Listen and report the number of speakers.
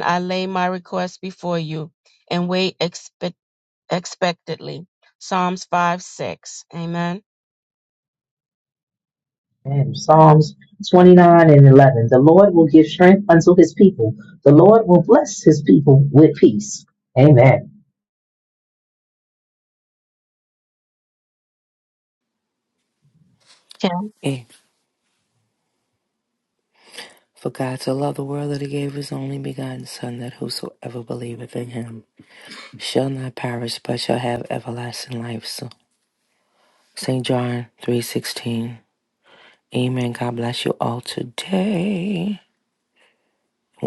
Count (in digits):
3